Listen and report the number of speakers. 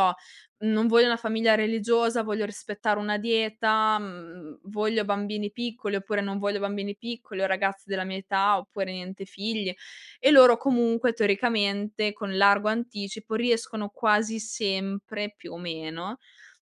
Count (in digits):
1